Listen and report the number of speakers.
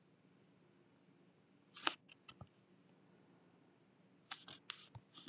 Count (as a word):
zero